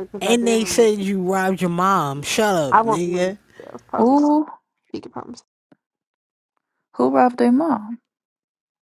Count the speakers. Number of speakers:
3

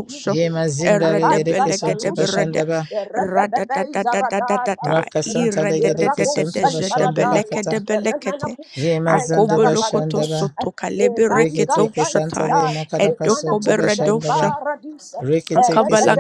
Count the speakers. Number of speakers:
3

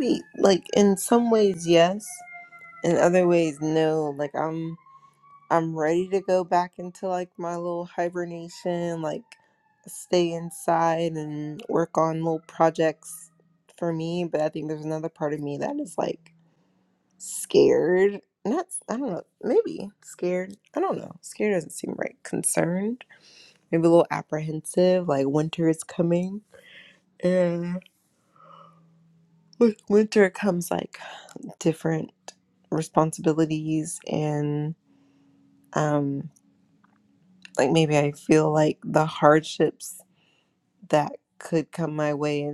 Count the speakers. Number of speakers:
1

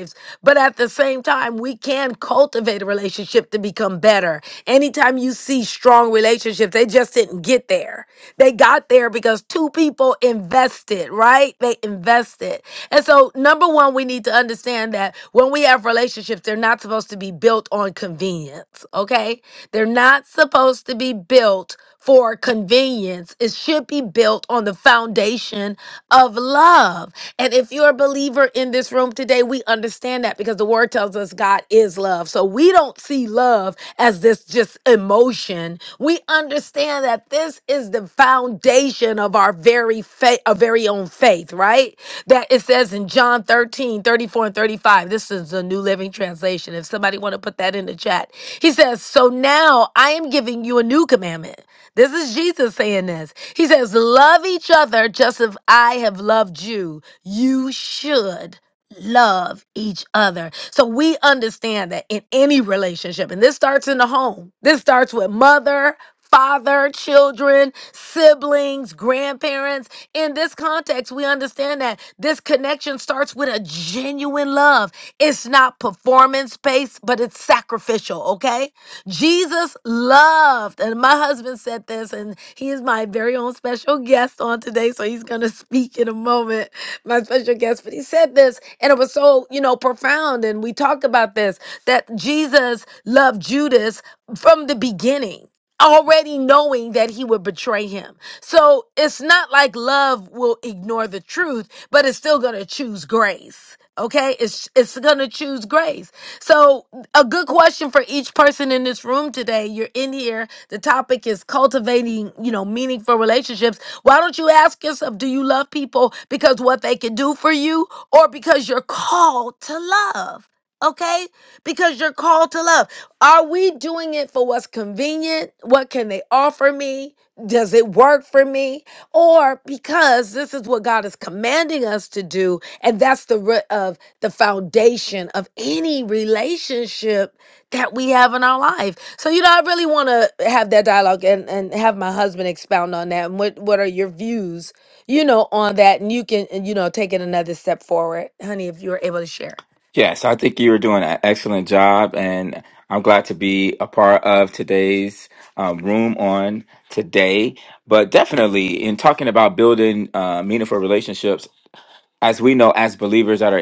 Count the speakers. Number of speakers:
2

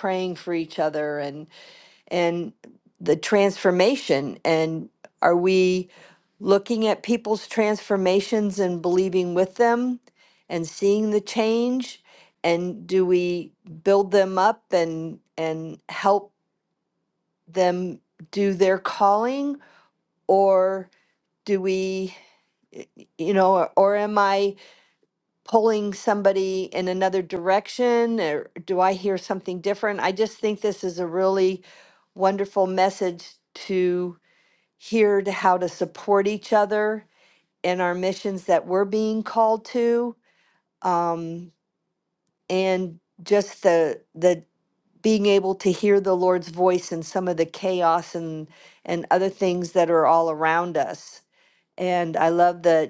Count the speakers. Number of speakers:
1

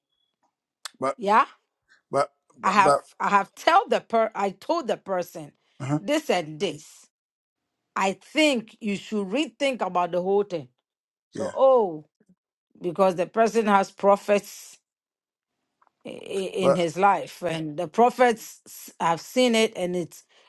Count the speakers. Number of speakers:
2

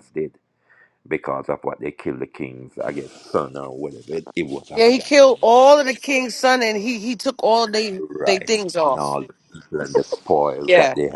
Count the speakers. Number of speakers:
2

